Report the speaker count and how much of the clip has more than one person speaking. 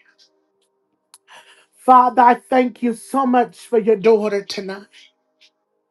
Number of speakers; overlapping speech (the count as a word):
one, no overlap